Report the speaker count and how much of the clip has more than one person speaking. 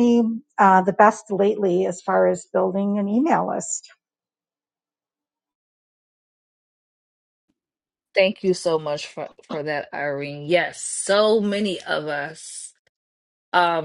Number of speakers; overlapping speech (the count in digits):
2, no overlap